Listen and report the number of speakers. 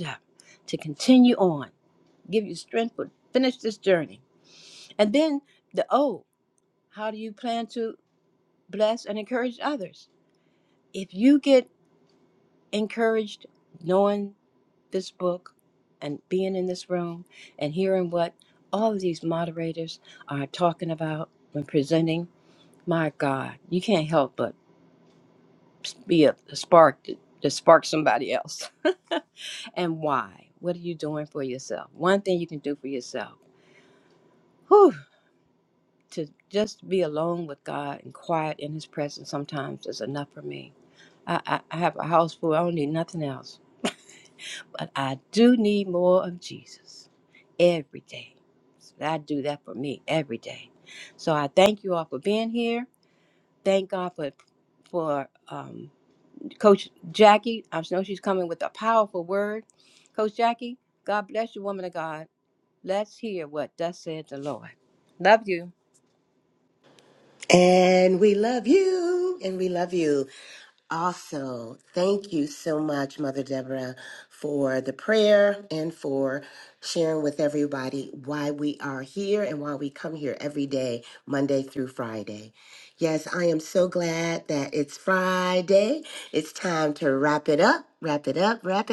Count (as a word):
two